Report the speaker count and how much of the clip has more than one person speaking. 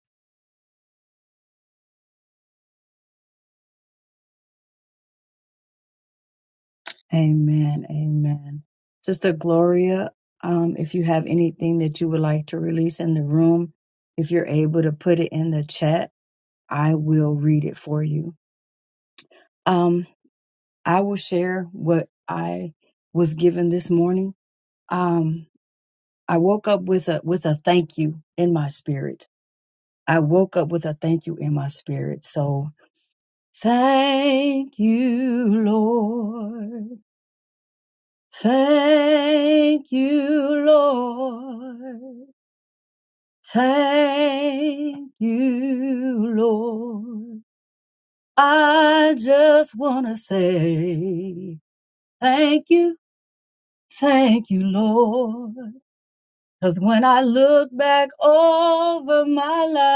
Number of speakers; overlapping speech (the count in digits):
1, no overlap